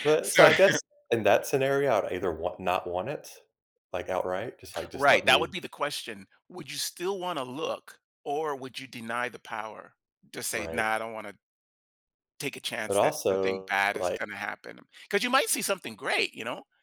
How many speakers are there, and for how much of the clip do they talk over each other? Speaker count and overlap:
2, about 15%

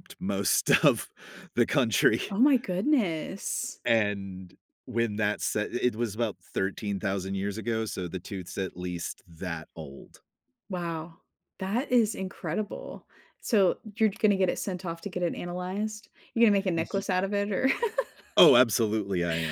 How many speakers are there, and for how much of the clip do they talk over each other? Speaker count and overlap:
2, about 1%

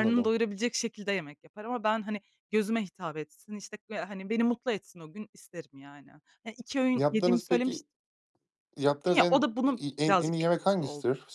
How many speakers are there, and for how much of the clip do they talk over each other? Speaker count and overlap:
2, about 24%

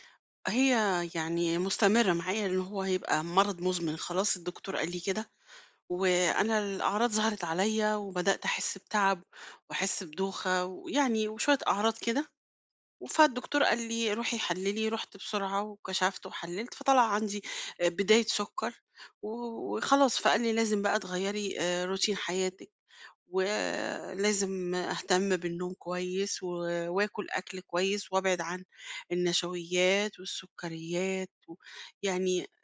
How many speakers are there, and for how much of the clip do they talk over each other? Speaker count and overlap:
1, no overlap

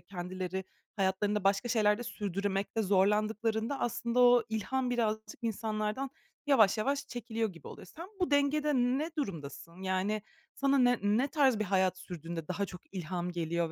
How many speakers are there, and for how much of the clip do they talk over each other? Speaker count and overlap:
1, no overlap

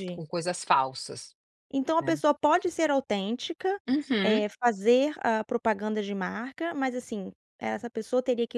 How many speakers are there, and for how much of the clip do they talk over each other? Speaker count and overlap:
2, about 7%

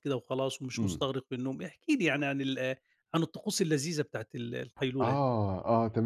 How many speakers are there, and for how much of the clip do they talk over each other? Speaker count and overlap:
2, about 7%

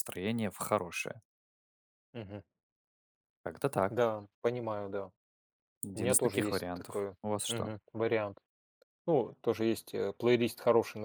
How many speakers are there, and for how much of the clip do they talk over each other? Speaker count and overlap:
2, about 13%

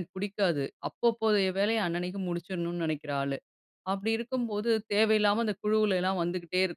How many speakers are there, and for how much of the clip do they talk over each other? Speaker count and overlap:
1, no overlap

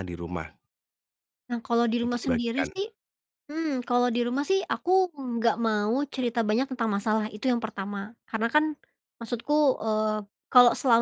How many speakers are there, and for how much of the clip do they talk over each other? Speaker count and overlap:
2, about 6%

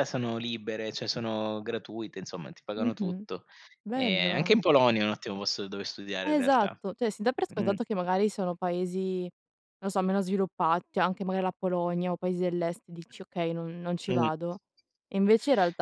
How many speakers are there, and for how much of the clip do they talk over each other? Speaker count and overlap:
2, about 13%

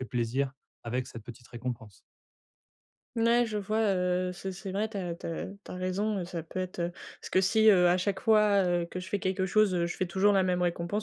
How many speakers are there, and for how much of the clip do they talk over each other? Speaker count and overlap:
2, no overlap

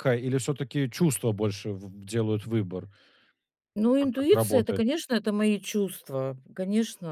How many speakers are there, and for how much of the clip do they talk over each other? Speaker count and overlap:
2, about 11%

